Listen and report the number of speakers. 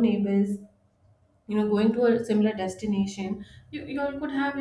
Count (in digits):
1